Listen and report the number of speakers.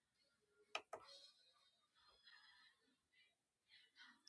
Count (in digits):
0